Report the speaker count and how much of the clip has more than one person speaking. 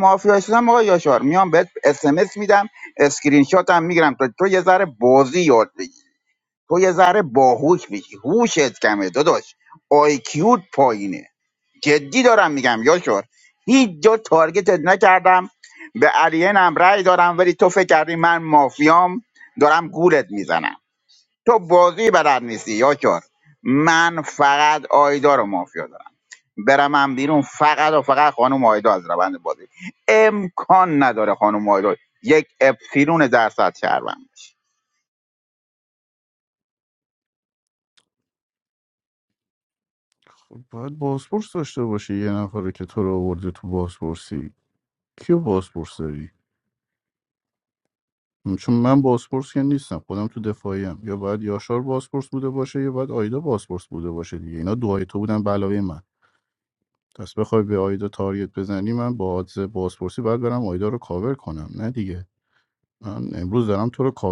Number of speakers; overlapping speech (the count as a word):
two, no overlap